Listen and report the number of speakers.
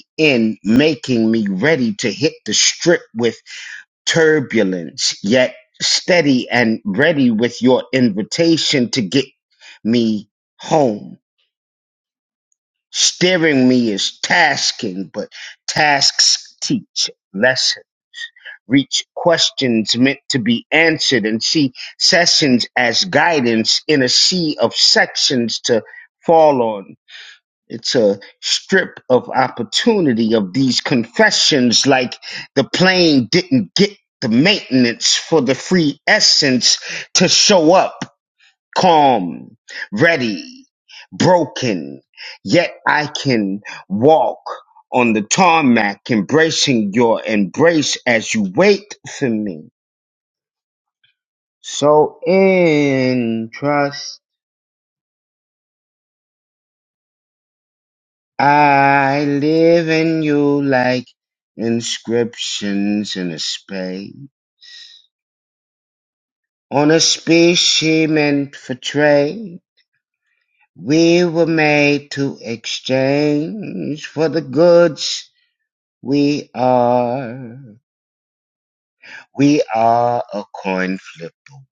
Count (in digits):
1